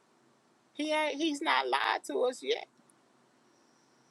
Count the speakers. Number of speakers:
one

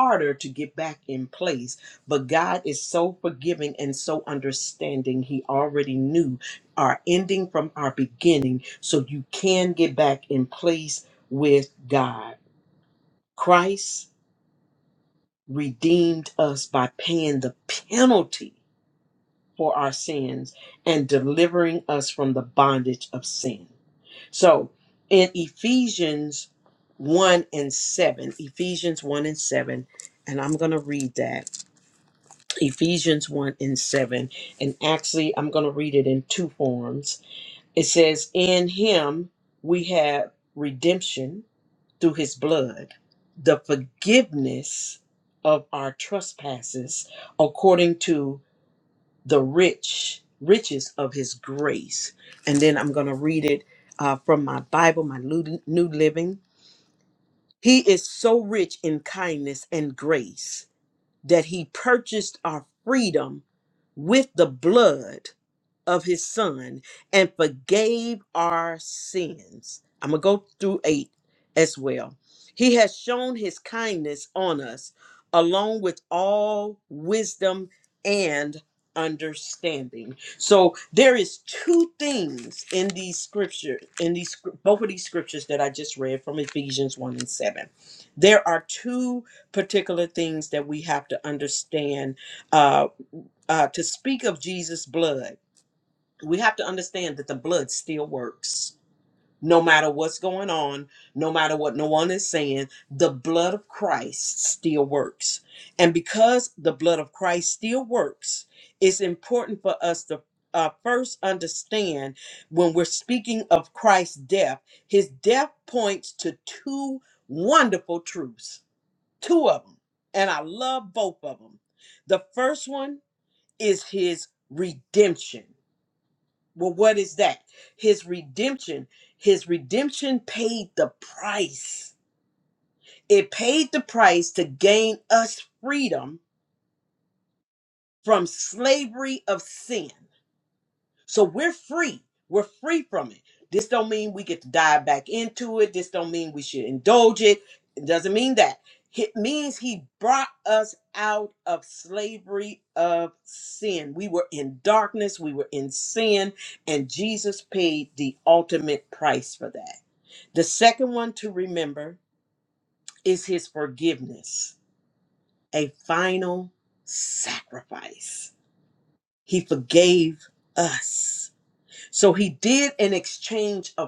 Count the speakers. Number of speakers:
one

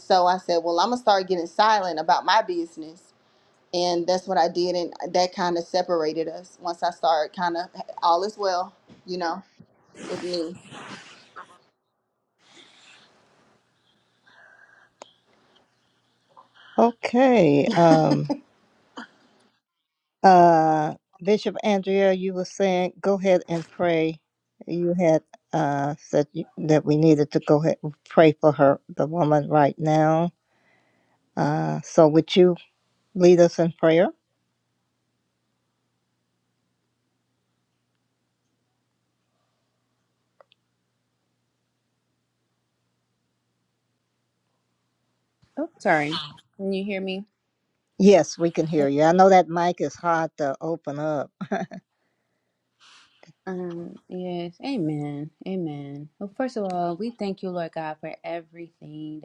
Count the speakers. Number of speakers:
three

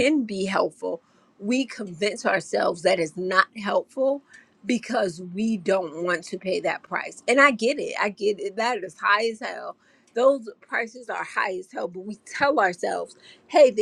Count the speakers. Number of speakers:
one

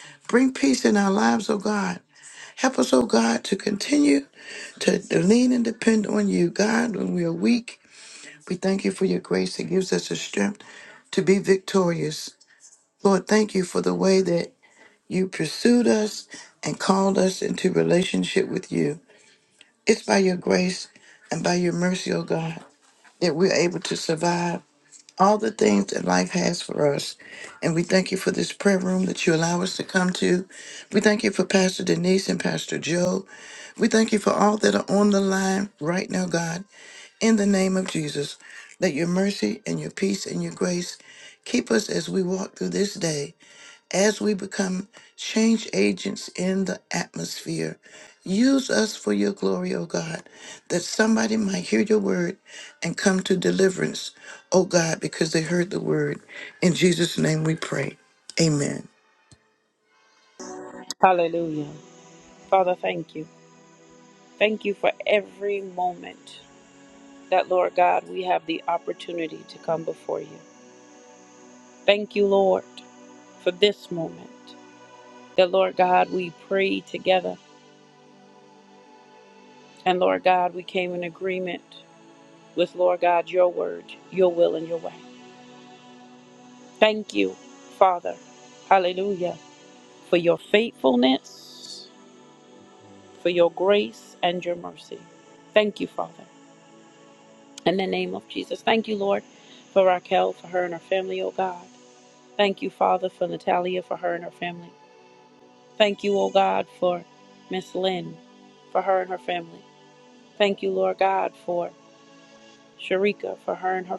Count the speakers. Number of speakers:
two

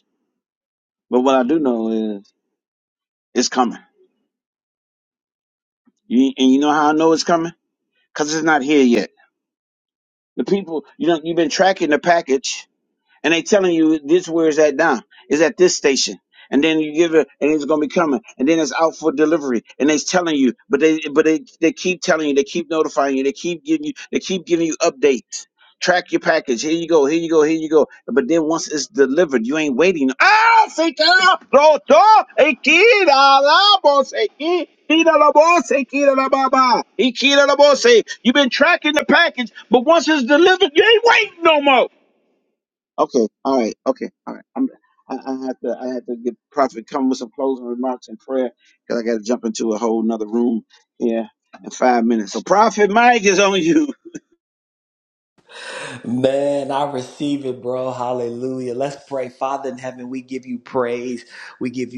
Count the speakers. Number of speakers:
two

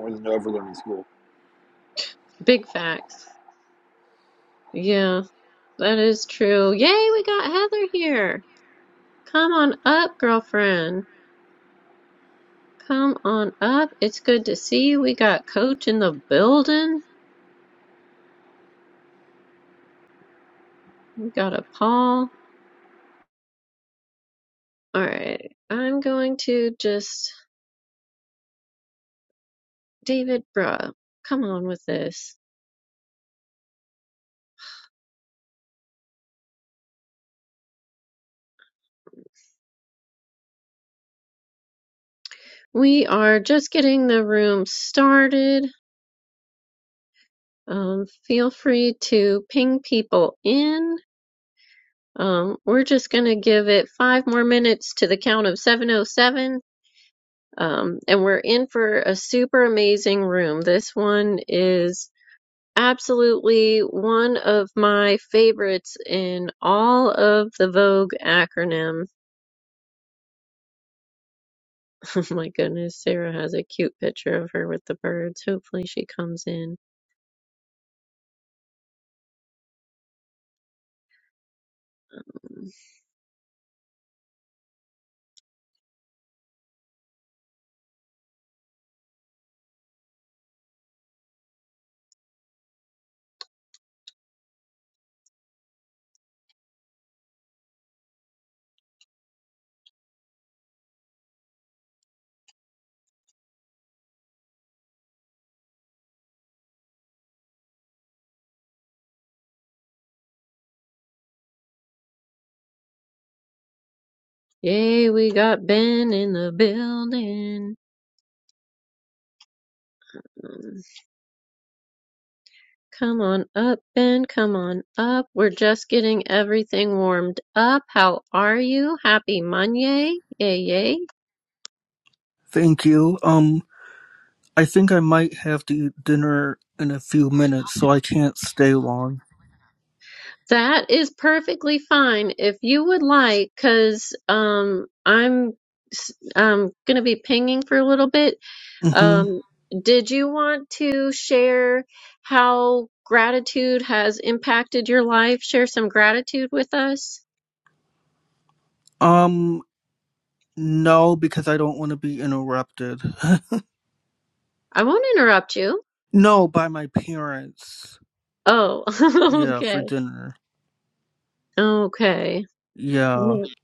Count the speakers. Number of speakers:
three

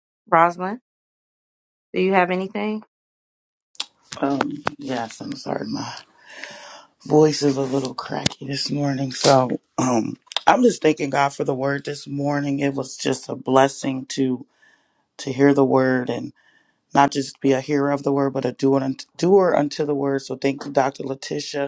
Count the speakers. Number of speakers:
two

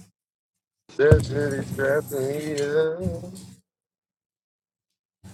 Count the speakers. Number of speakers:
one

